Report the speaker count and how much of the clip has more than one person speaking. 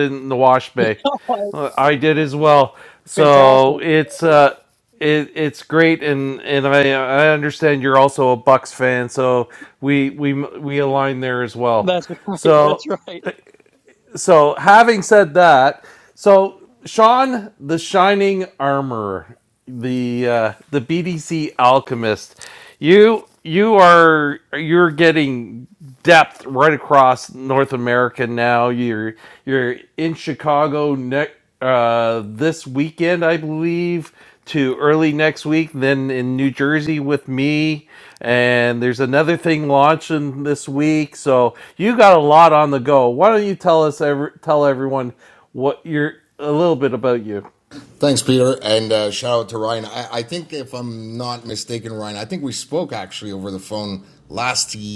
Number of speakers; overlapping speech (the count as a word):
three, about 2%